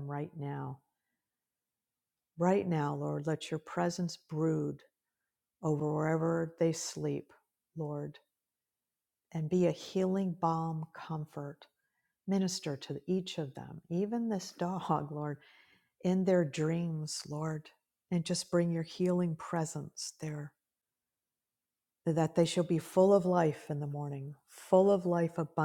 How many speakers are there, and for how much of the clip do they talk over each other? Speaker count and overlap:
1, no overlap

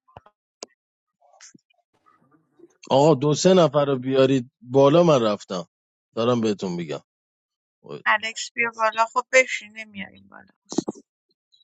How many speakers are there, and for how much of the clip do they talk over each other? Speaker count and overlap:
2, no overlap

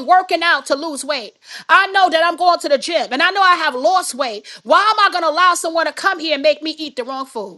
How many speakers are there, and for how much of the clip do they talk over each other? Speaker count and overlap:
1, no overlap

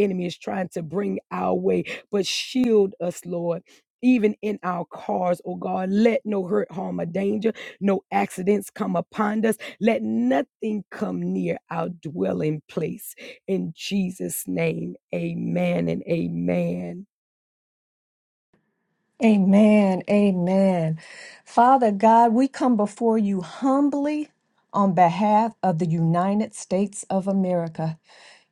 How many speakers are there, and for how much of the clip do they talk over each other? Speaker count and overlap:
2, no overlap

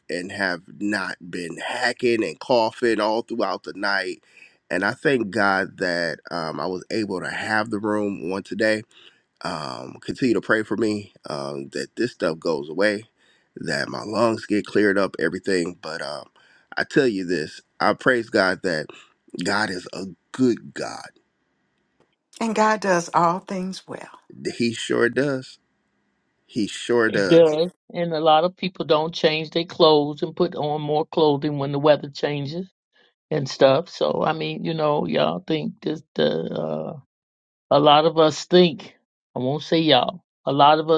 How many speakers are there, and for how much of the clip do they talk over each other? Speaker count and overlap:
3, about 1%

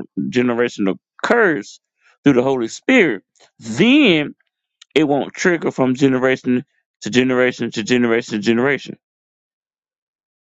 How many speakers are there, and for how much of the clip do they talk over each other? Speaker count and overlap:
1, no overlap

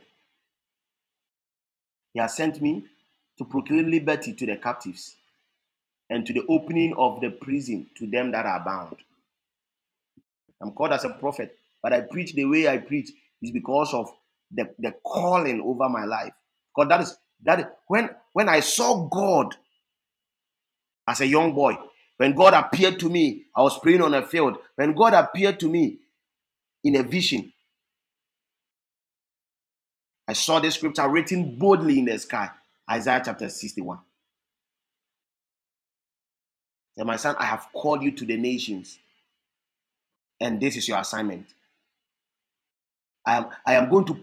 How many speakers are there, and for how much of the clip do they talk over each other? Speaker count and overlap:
1, no overlap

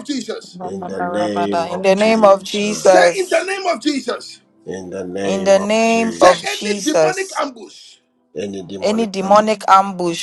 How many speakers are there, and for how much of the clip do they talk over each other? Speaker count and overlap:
3, about 45%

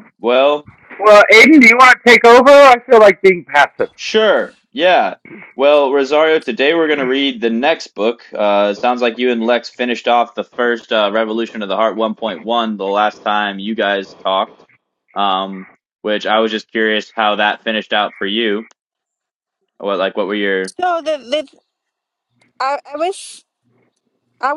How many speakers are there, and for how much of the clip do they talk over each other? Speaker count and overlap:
3, no overlap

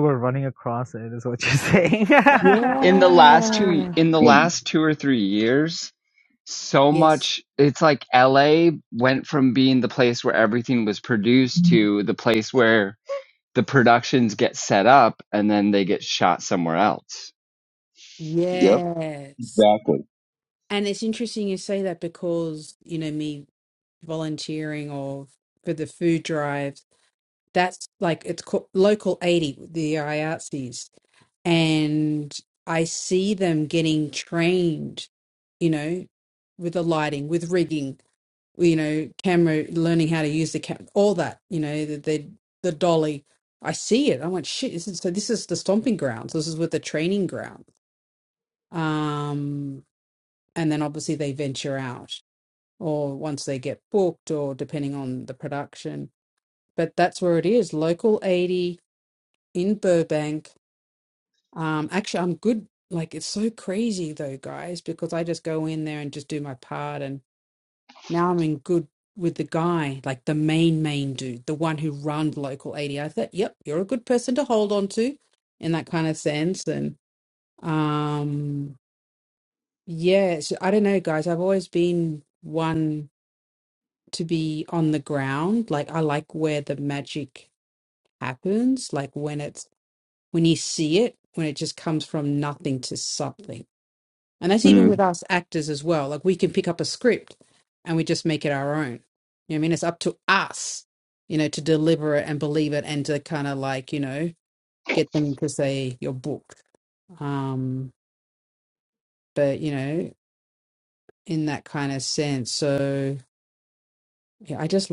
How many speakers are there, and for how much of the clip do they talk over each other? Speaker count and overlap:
4, about 2%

